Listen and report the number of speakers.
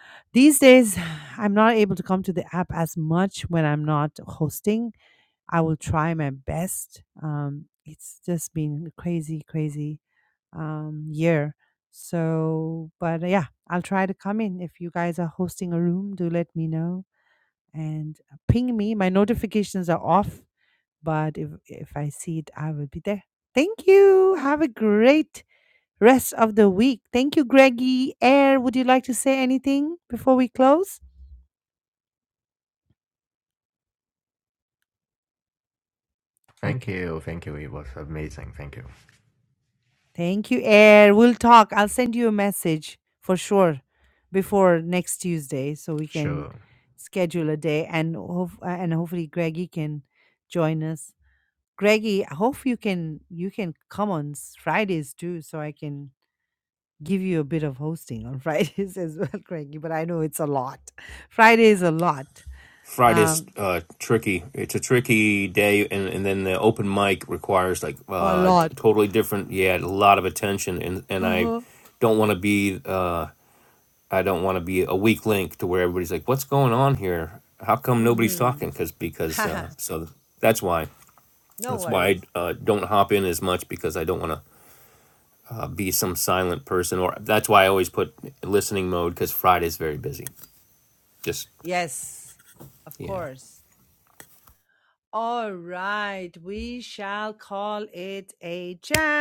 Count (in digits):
3